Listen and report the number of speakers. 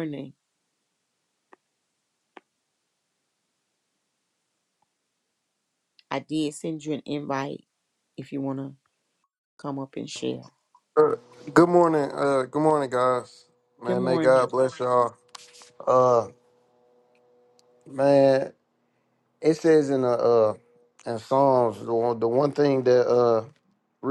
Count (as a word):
two